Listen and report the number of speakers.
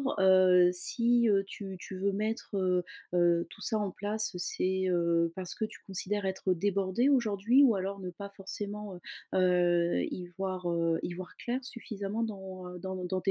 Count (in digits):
1